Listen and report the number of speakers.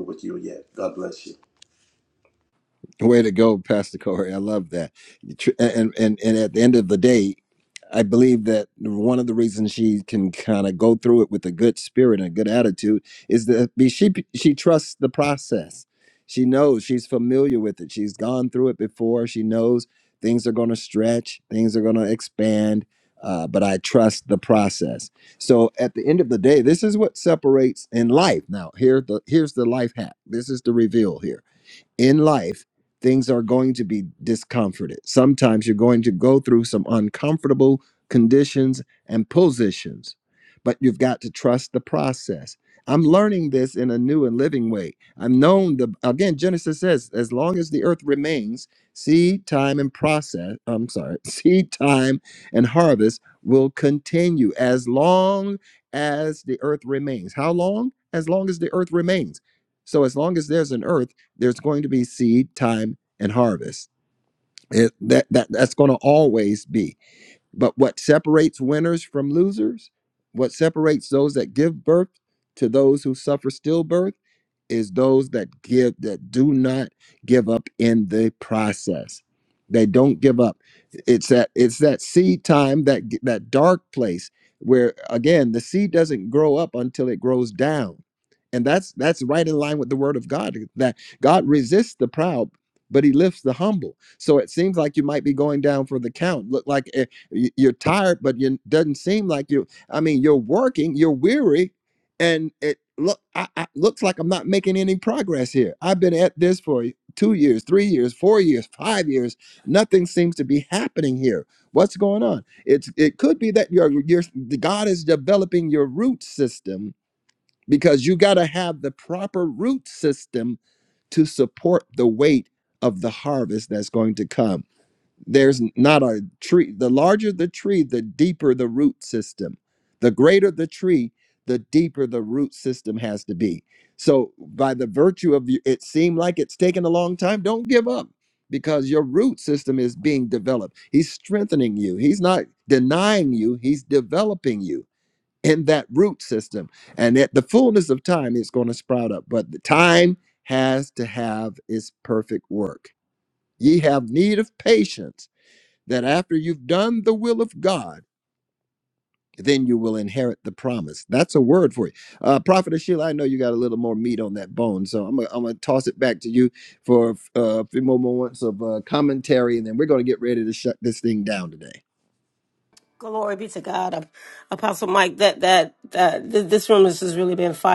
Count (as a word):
three